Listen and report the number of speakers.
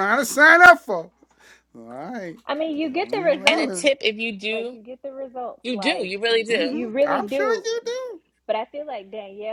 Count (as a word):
three